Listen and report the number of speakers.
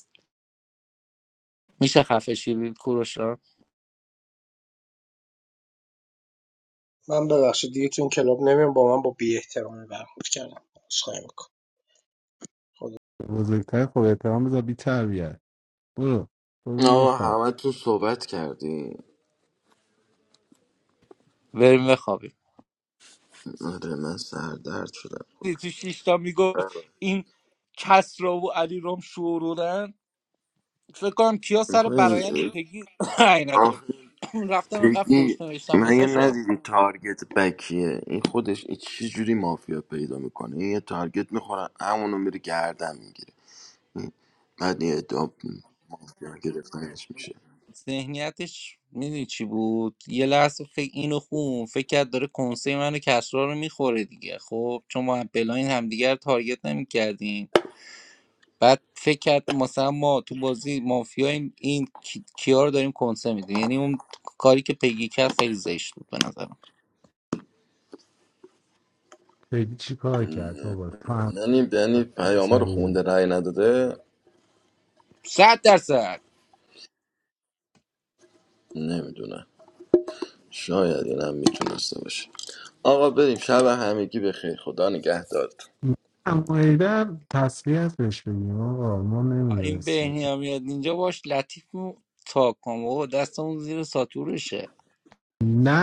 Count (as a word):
four